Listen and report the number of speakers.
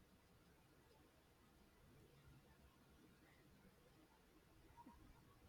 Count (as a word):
zero